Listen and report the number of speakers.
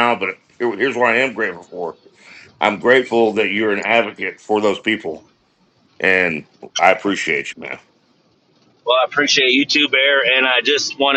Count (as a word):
two